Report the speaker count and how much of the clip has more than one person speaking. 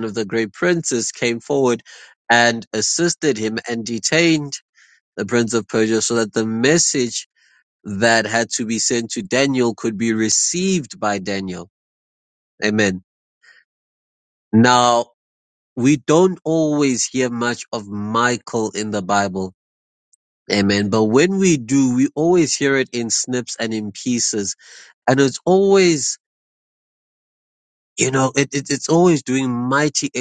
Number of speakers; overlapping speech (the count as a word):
one, no overlap